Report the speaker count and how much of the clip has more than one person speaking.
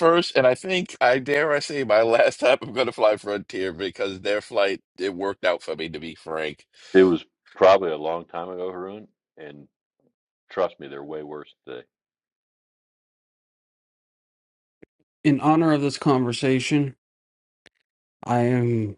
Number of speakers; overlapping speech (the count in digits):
3, no overlap